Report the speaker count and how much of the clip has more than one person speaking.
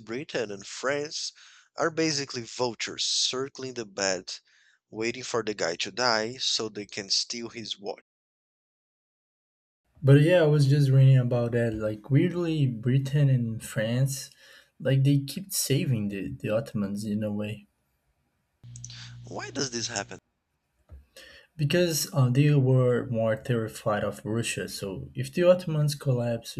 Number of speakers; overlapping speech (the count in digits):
2, no overlap